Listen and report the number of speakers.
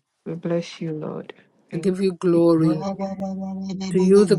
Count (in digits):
3